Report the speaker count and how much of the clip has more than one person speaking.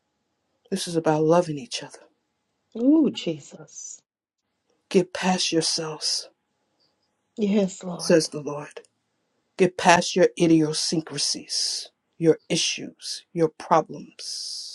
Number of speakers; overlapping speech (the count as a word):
two, about 1%